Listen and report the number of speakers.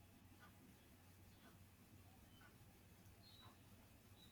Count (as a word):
zero